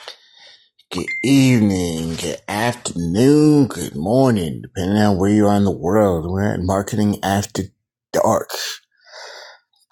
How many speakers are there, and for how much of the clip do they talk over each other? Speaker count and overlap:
one, no overlap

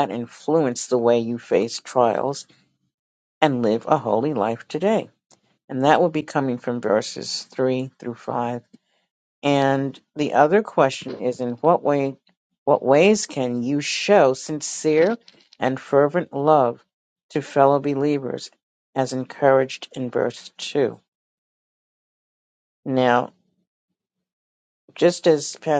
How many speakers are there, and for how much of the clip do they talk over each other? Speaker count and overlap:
one, no overlap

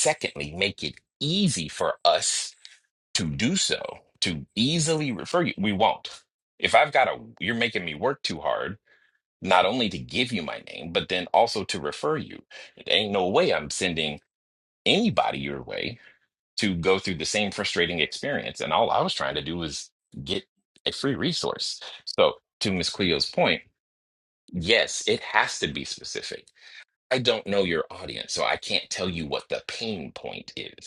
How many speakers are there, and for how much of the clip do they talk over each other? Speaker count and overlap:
one, no overlap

